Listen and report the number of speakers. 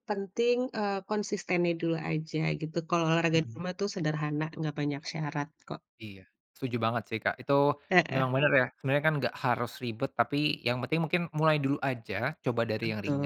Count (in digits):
2